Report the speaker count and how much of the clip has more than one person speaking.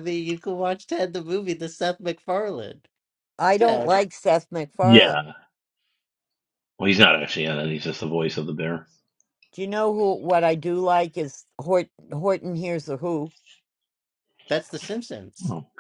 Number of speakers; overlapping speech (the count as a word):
three, about 5%